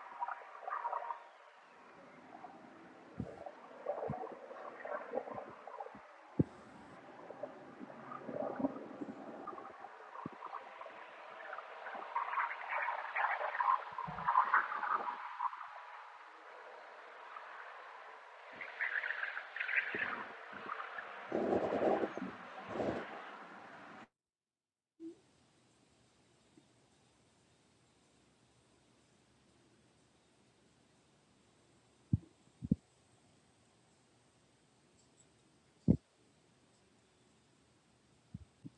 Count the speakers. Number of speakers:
0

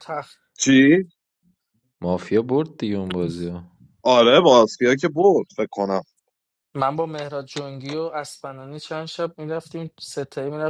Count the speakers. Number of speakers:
3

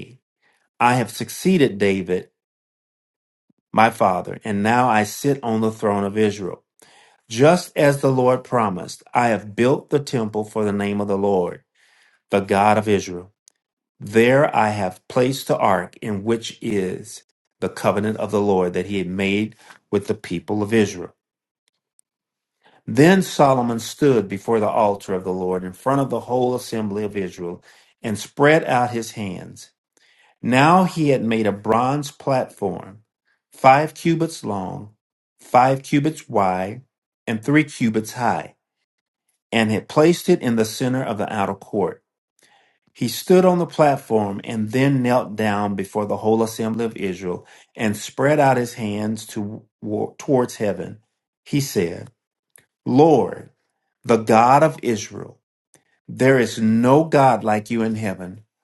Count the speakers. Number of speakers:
1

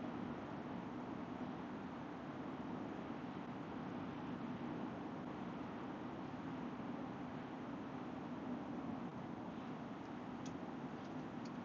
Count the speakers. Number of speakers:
0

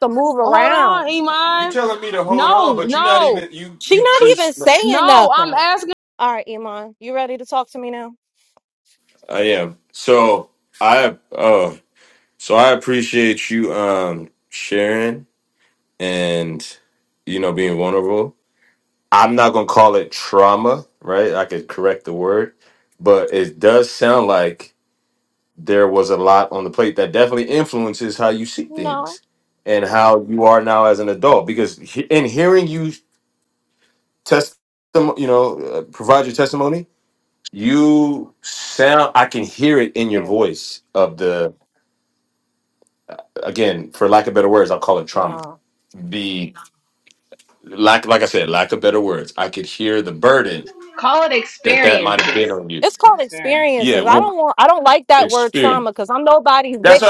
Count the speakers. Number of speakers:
4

